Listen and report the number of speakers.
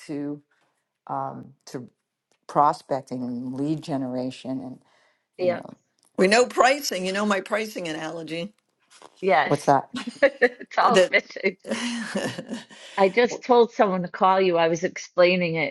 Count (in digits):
3